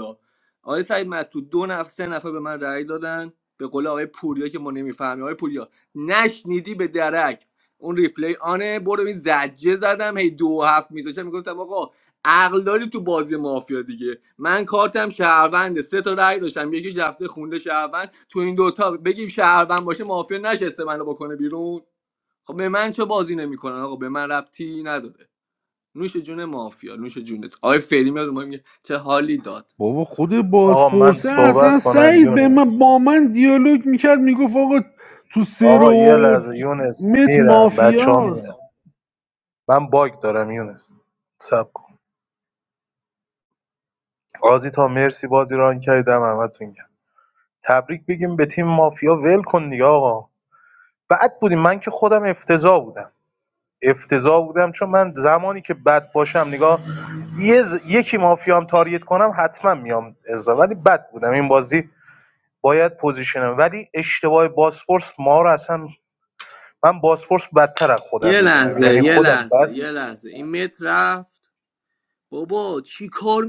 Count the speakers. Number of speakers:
three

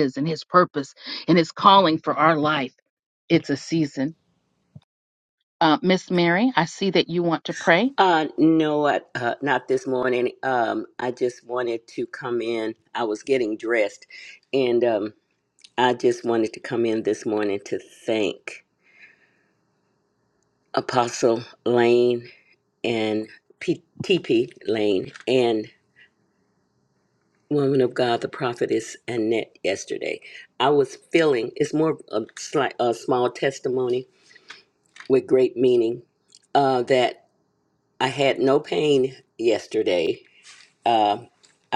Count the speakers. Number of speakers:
two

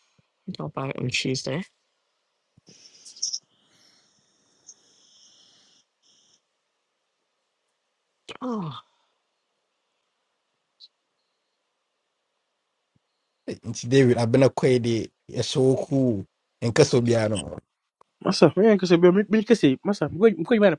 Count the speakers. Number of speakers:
three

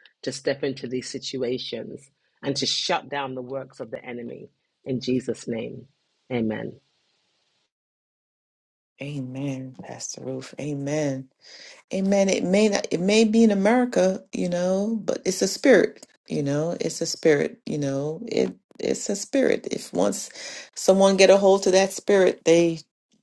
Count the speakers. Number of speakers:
two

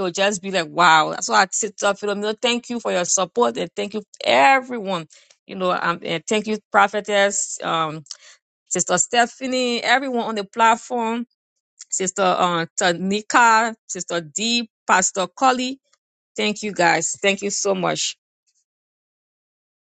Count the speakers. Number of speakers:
one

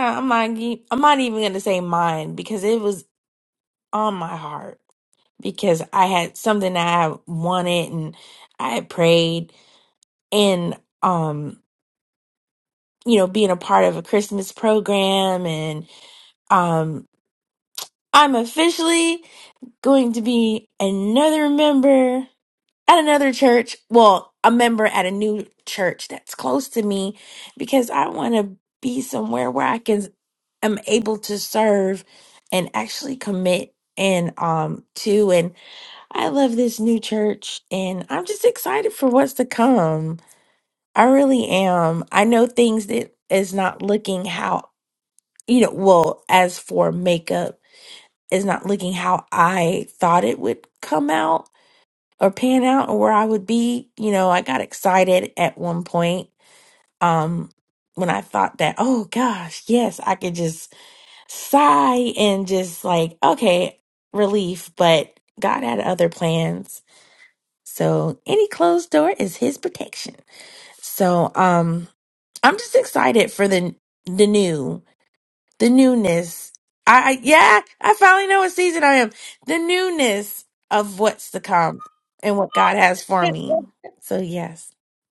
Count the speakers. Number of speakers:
one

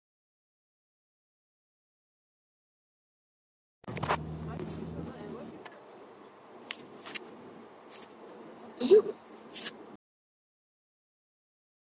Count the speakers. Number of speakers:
zero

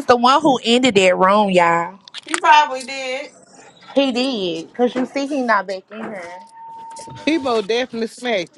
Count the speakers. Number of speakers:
three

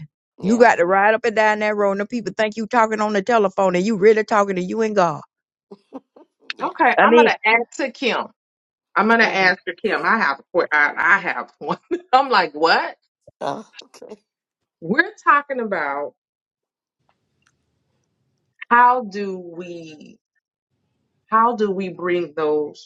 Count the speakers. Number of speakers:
three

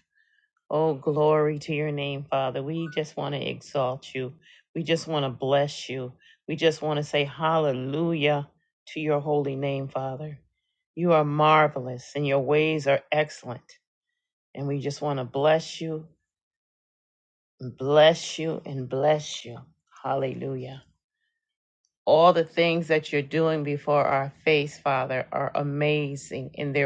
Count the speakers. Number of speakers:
one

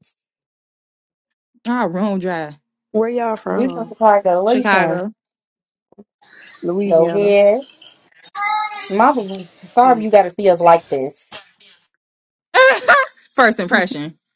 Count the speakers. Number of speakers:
three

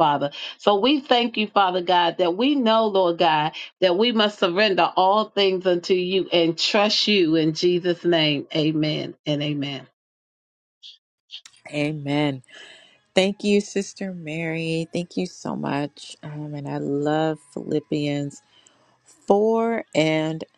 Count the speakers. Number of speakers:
two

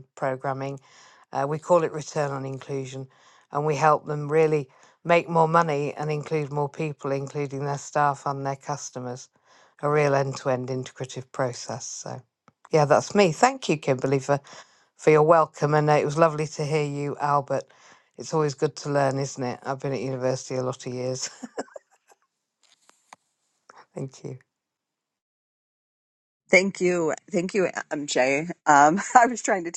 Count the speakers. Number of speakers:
two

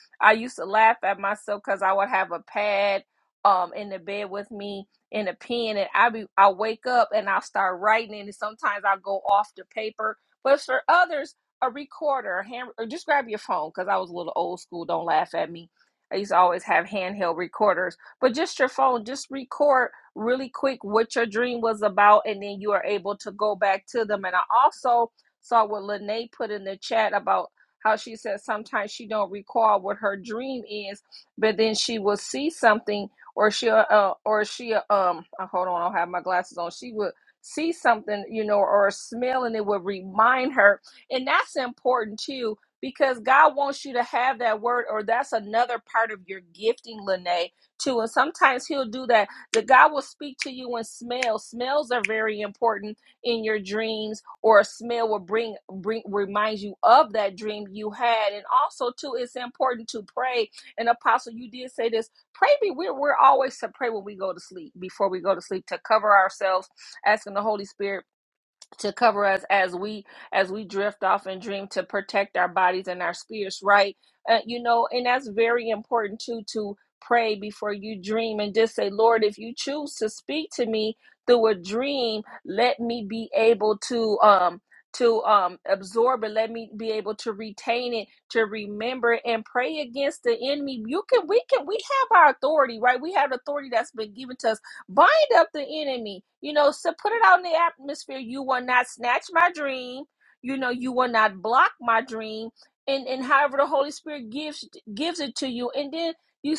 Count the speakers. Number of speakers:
one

